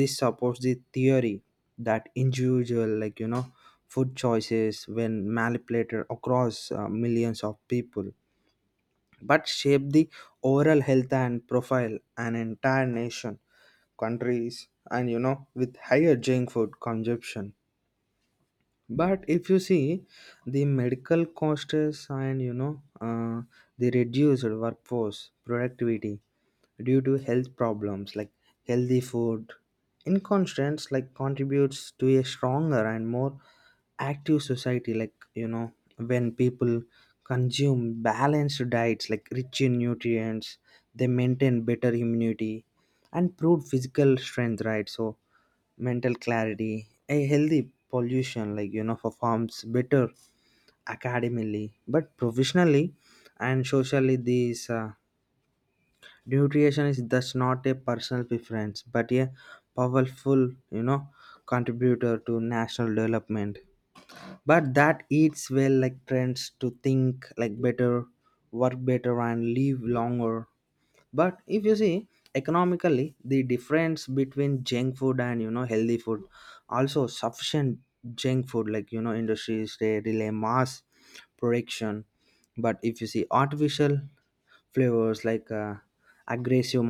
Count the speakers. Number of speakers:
1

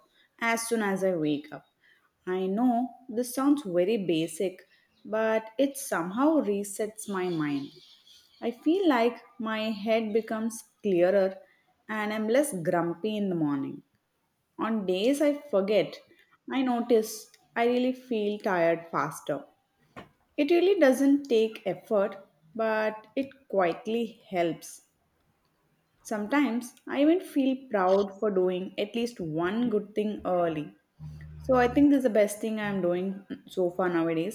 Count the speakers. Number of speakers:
1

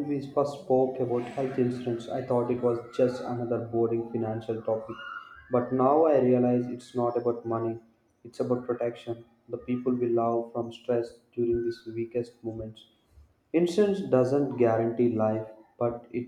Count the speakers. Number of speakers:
1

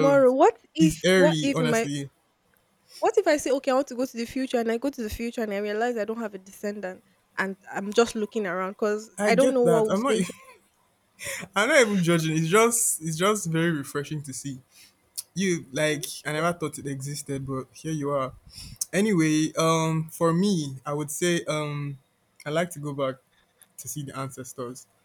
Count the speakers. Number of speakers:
2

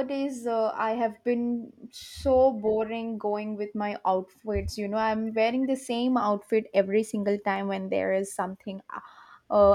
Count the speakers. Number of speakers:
1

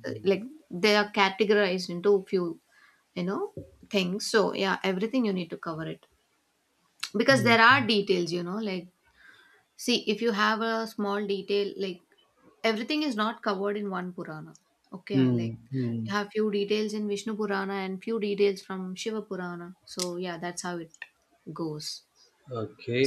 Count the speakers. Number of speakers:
2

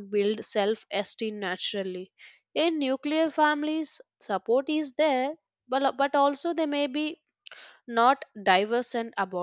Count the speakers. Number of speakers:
1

